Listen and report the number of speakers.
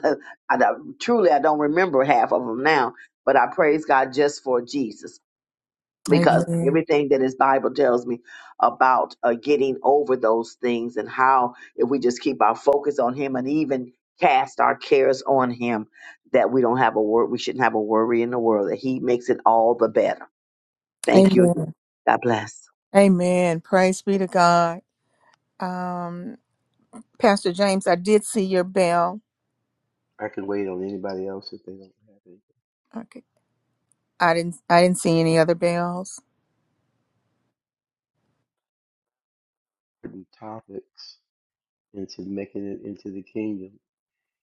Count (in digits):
3